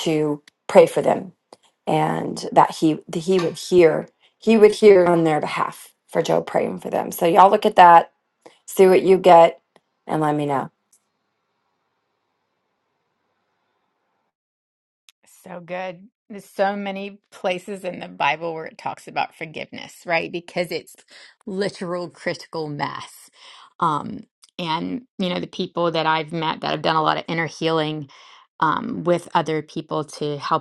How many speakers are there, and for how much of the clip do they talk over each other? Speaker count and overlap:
two, no overlap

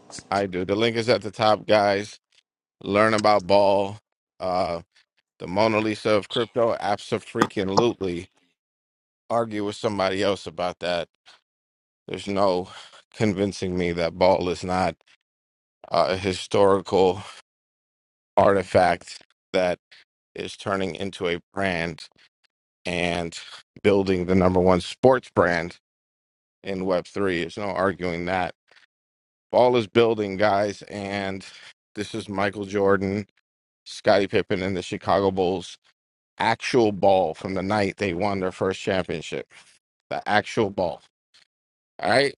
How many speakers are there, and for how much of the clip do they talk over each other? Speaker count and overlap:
one, no overlap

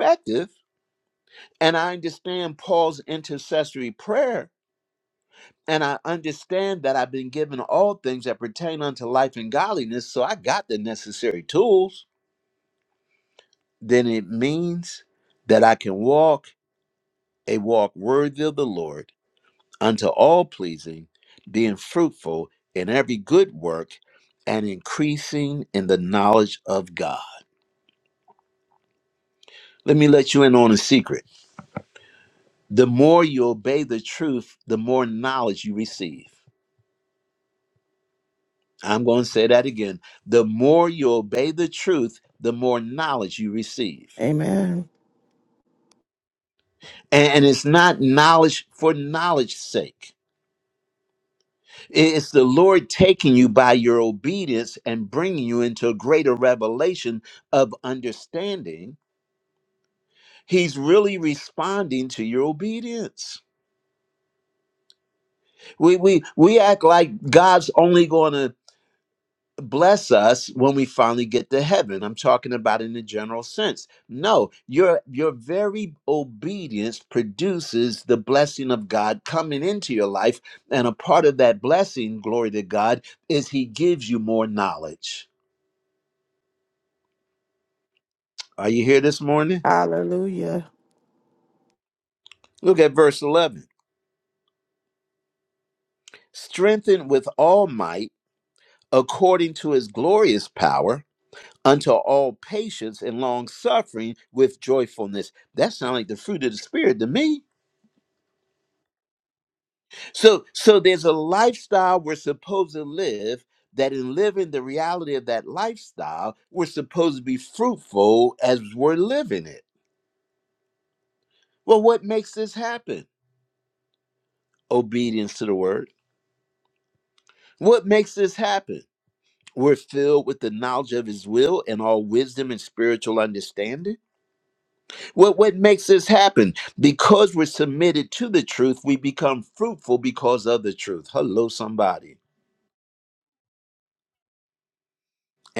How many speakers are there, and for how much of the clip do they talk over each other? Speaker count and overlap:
two, no overlap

